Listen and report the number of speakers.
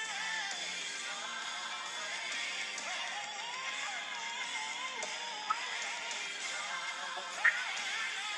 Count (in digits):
0